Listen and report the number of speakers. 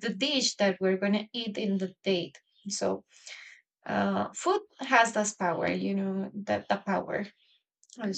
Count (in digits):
1